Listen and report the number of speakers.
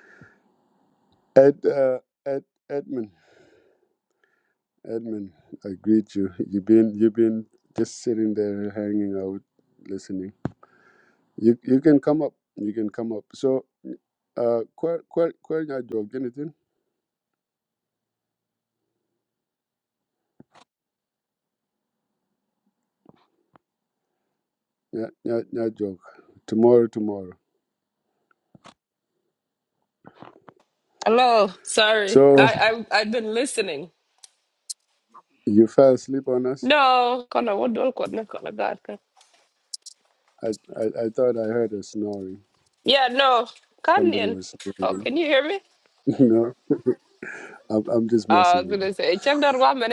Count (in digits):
2